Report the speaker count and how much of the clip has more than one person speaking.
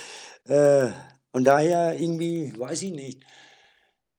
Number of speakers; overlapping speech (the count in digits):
1, no overlap